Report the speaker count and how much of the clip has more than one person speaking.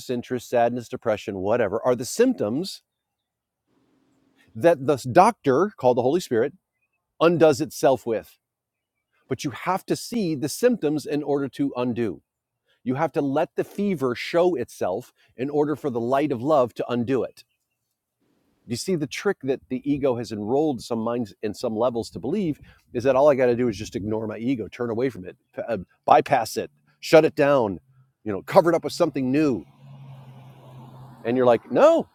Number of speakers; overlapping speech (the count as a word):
one, no overlap